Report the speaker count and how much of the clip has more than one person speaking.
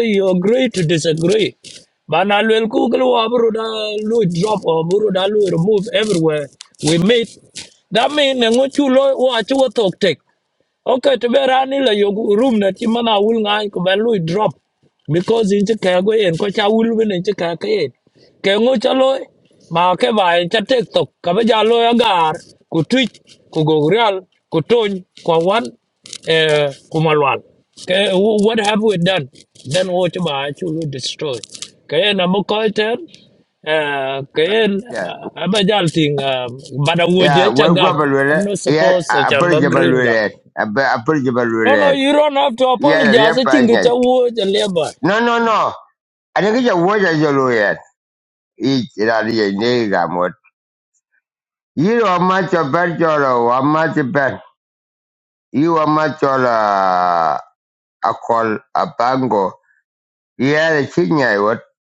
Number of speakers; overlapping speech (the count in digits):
2, about 7%